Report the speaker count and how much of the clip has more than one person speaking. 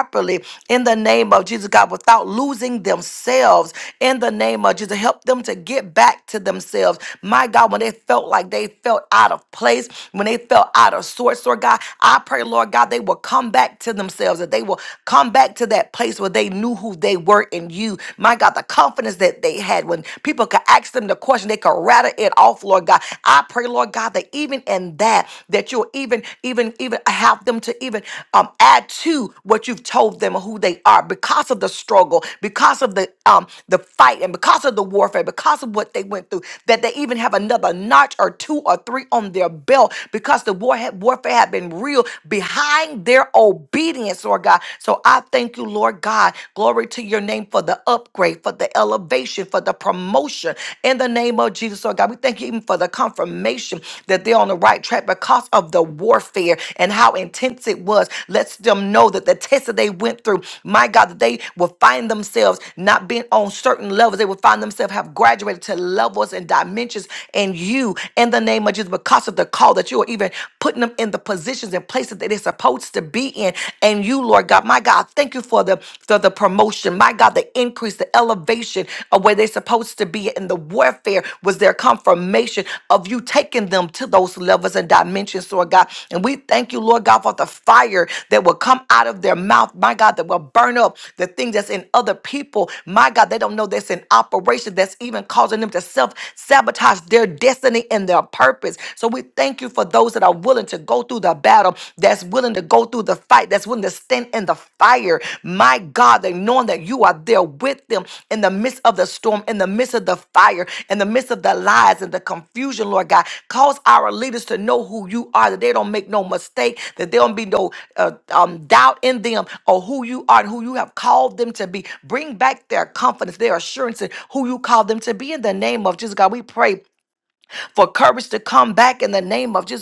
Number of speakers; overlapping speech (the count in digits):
1, no overlap